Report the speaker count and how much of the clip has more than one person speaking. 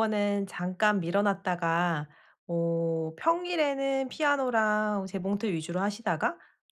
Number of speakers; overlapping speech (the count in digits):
1, no overlap